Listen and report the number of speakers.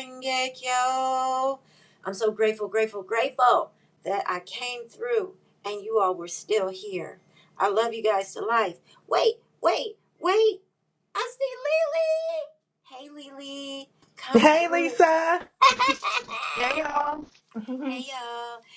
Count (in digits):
2